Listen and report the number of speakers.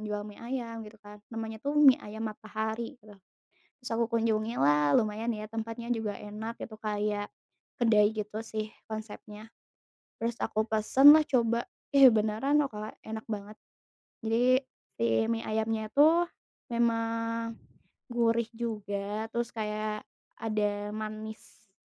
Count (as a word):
one